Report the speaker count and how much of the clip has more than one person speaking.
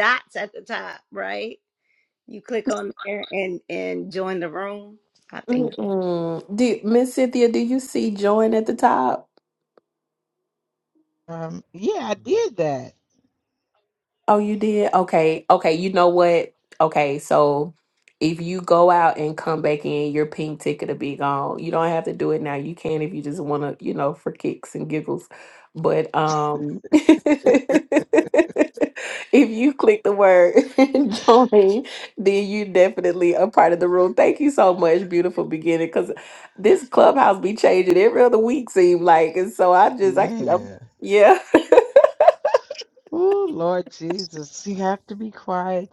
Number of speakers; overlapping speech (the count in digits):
3, about 2%